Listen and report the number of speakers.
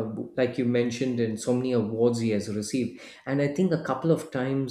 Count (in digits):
1